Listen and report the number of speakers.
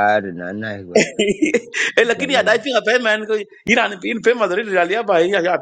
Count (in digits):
2